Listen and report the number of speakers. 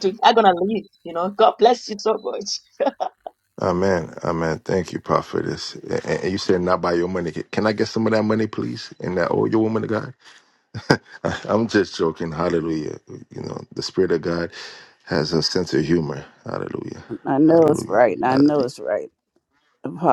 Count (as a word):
three